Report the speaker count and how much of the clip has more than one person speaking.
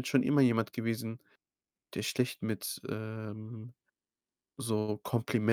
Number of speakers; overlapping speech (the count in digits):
1, no overlap